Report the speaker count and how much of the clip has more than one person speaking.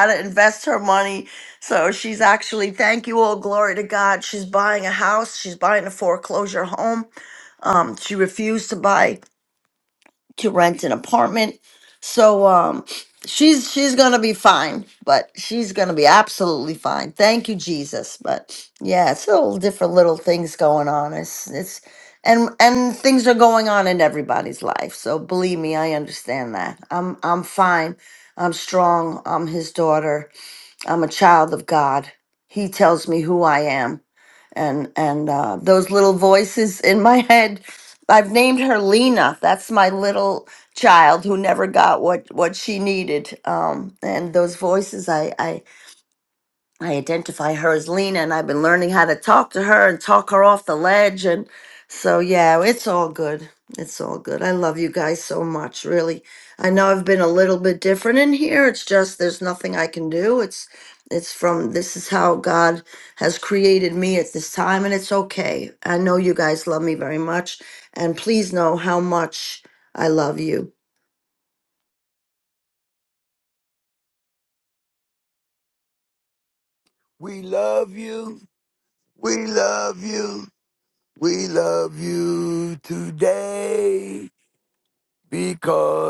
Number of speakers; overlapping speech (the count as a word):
two, no overlap